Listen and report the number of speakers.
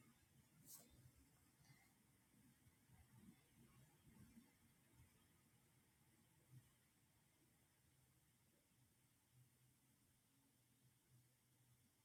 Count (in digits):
0